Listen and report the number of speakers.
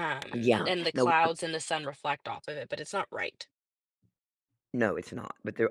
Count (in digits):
2